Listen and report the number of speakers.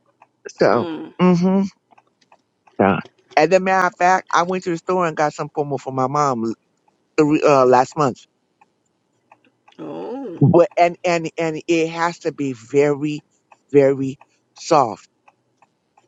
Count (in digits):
2